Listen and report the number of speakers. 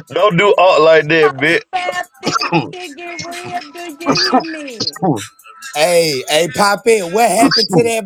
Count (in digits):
3